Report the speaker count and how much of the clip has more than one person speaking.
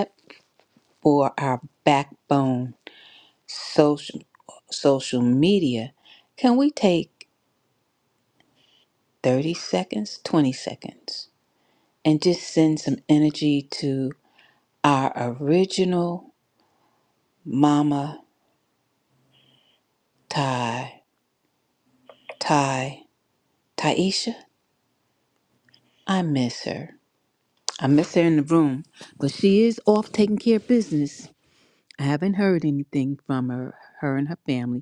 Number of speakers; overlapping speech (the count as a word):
one, no overlap